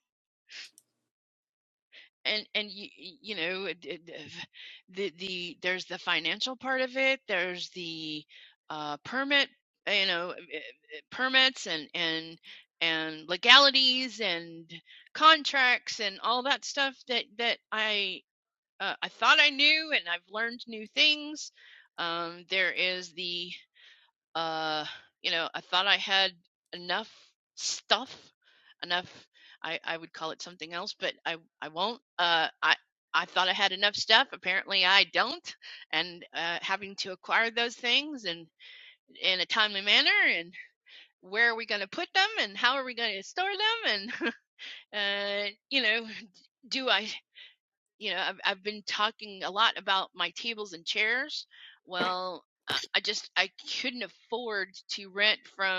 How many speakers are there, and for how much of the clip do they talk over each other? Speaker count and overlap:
one, no overlap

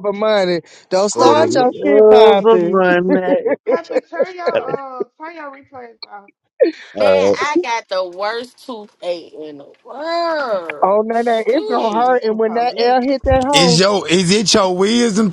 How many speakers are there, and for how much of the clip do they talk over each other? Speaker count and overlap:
five, about 27%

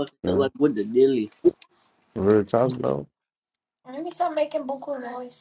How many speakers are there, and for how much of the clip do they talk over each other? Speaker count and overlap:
three, about 9%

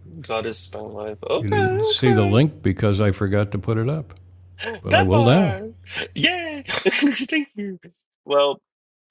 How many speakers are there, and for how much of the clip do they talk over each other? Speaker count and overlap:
two, about 19%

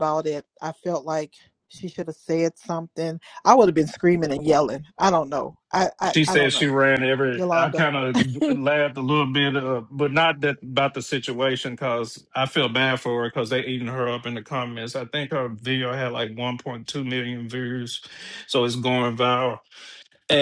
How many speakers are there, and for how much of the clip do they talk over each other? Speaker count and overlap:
two, about 6%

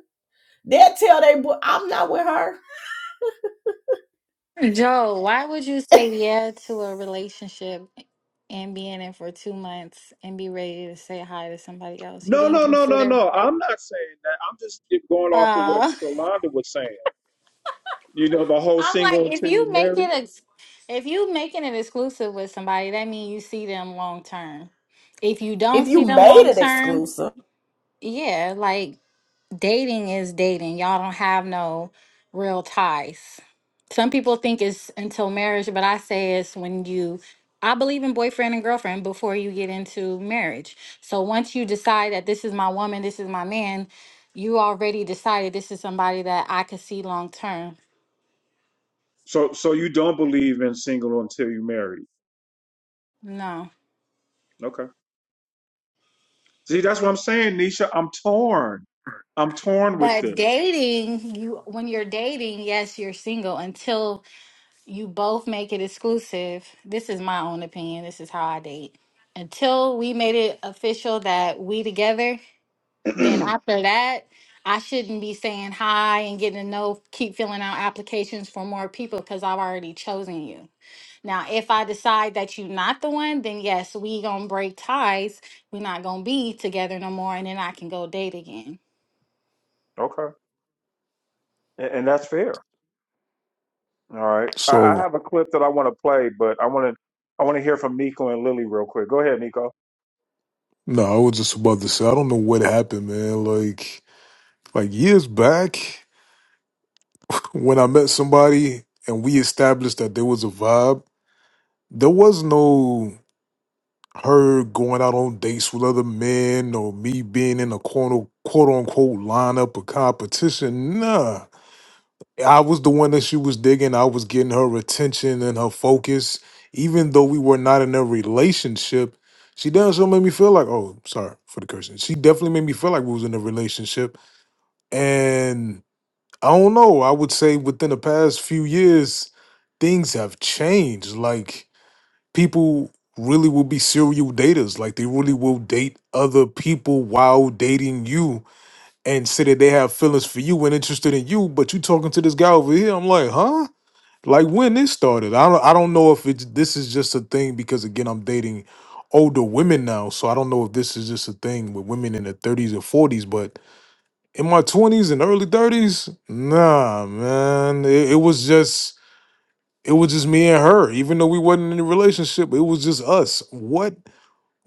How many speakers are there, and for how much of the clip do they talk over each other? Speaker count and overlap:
four, about 3%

